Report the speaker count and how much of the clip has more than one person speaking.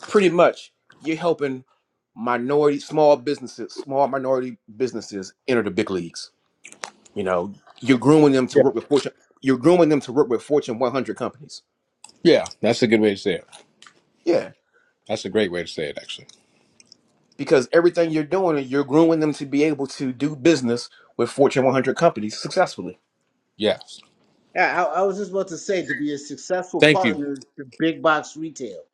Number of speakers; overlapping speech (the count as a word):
three, about 1%